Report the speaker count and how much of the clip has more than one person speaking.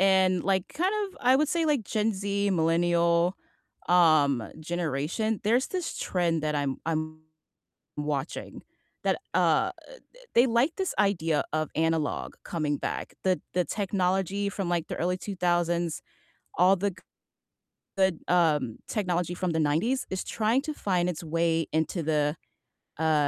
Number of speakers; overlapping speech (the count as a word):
one, no overlap